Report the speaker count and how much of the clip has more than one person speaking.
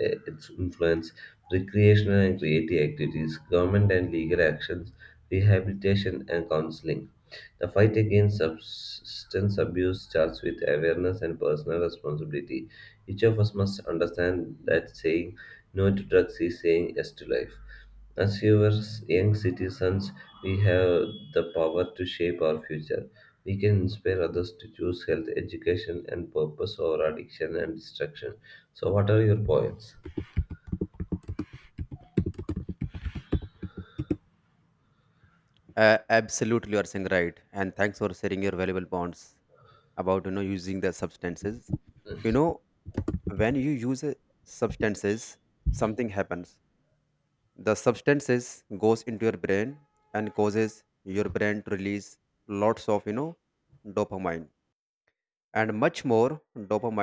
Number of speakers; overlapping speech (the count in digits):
2, no overlap